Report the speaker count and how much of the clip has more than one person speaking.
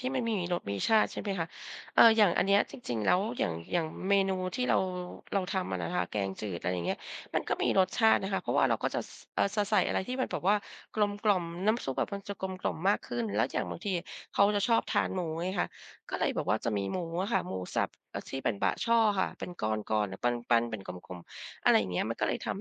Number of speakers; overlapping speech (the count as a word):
one, no overlap